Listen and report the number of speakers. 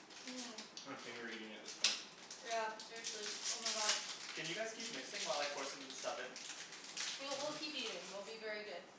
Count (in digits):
3